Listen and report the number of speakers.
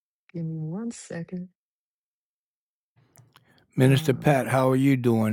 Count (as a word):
two